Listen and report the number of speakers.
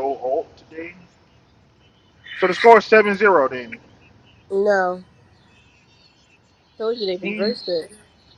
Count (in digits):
2